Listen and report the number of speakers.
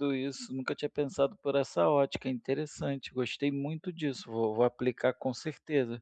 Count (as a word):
one